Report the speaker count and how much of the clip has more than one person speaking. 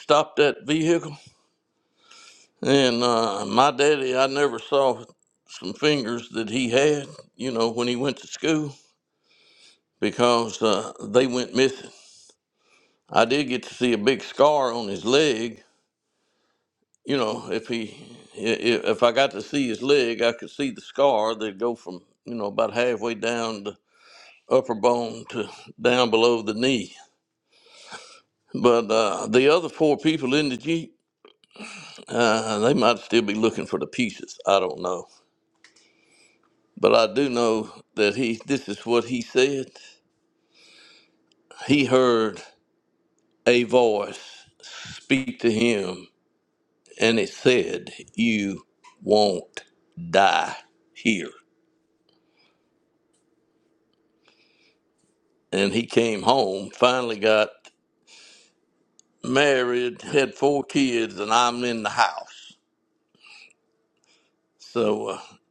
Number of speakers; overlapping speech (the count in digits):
1, no overlap